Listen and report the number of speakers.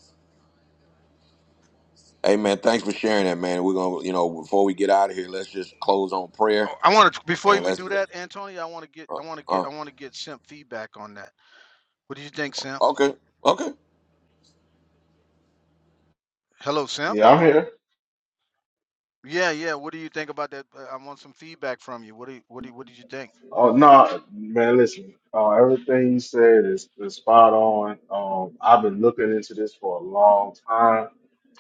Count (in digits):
3